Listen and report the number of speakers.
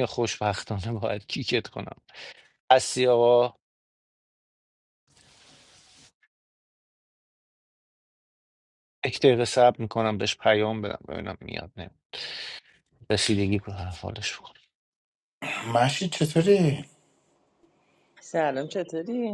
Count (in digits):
3